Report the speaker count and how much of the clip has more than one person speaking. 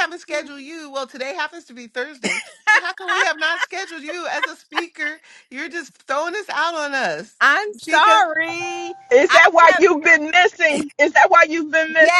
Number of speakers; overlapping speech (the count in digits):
3, about 10%